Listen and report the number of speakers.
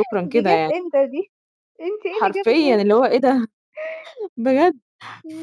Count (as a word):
two